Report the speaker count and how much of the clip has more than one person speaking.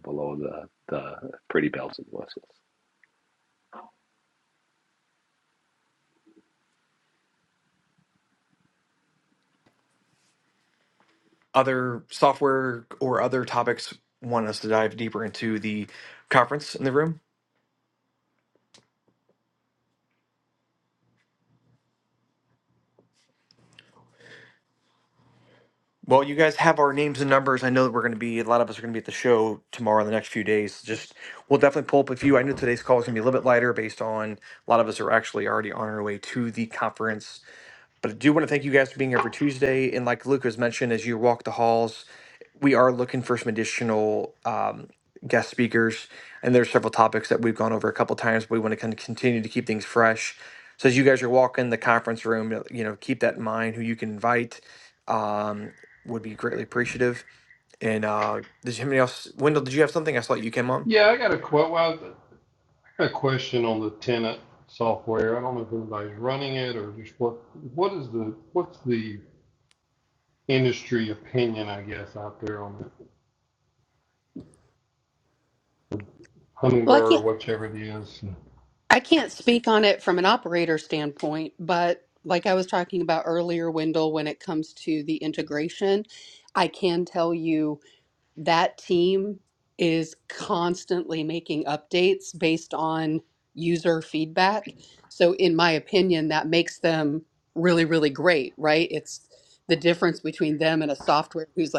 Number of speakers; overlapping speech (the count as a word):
four, under 1%